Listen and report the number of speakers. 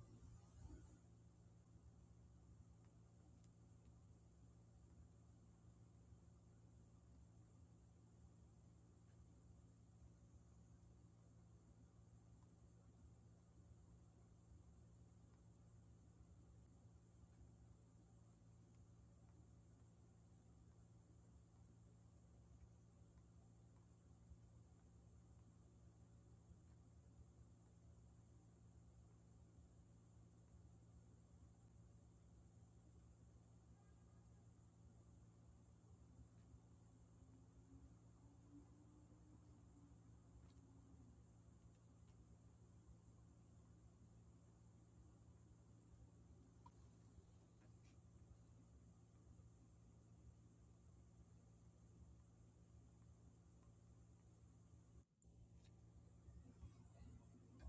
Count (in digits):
0